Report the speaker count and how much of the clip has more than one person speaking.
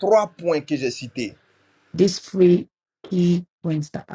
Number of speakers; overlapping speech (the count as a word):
two, no overlap